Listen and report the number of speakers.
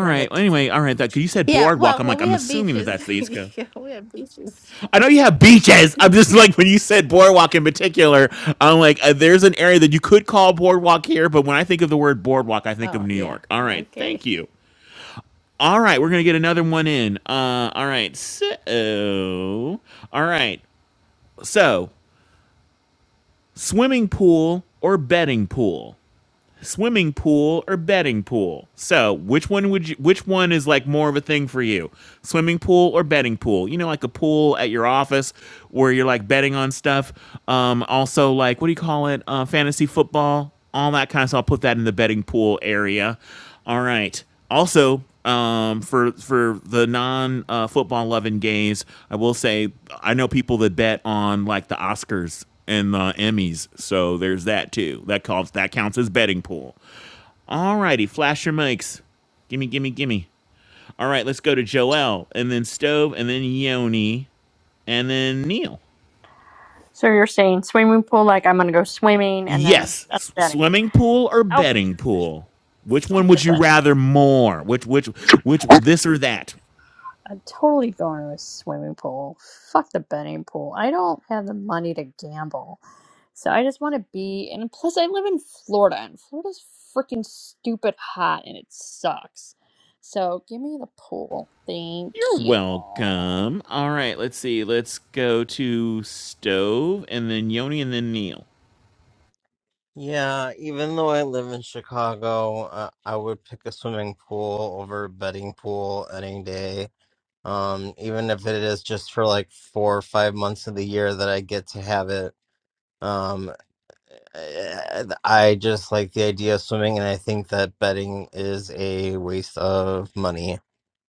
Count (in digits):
4